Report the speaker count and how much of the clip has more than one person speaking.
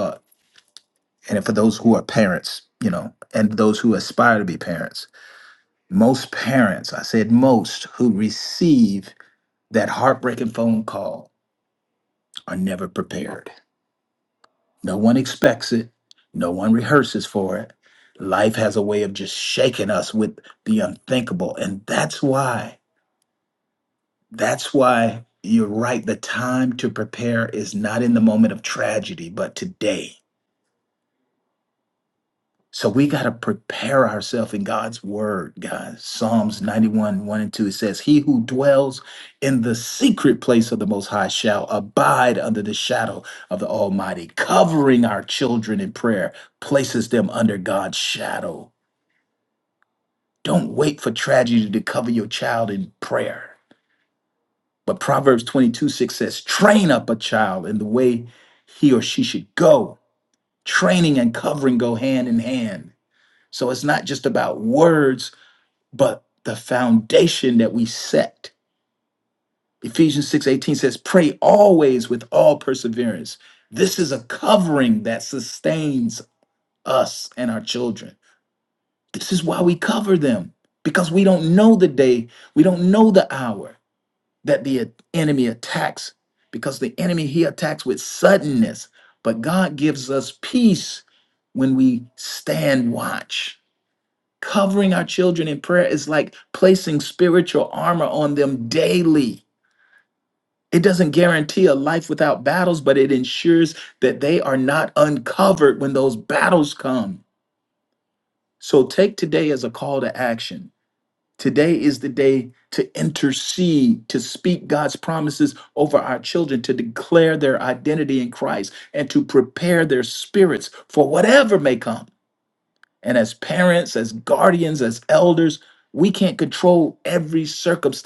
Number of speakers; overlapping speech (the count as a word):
one, no overlap